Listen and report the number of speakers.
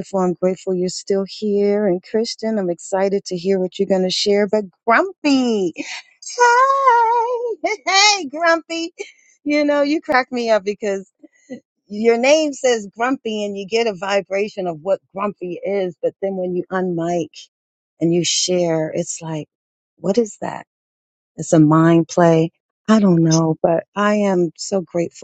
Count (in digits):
1